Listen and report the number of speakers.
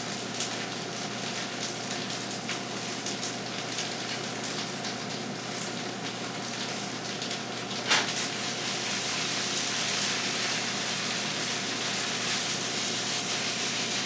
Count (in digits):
0